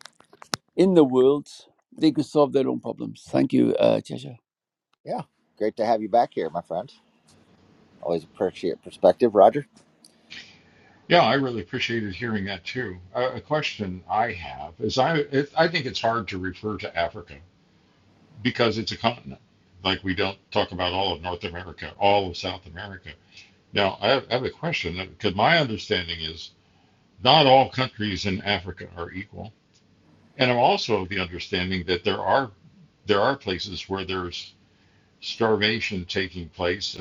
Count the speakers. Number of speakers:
3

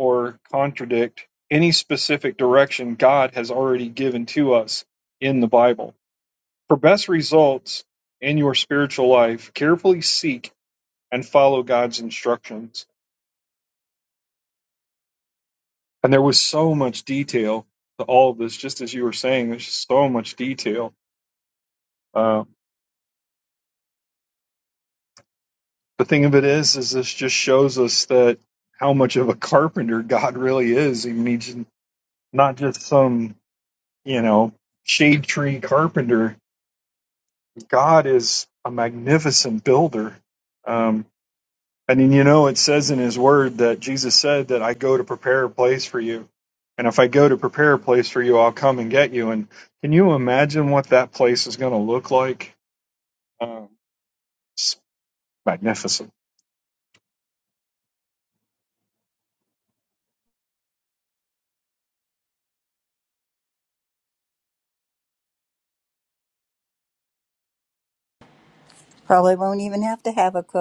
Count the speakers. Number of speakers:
2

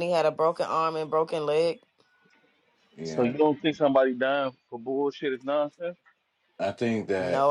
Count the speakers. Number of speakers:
3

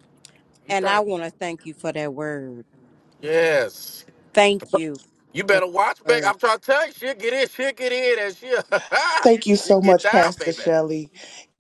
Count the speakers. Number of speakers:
3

